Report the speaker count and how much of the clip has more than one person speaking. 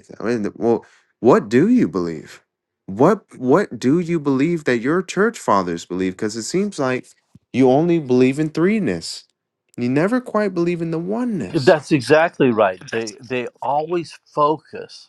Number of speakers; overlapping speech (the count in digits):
2, about 1%